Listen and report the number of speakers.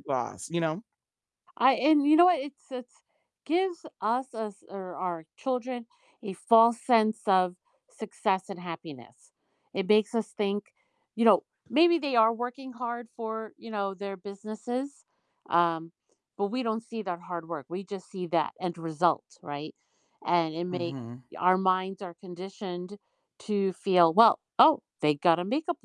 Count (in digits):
2